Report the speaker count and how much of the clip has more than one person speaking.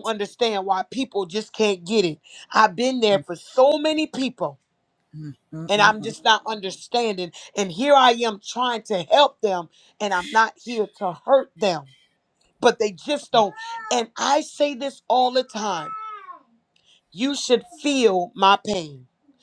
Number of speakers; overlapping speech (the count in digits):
1, no overlap